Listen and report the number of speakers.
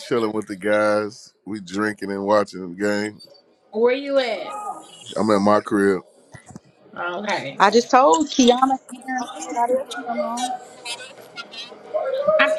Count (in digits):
3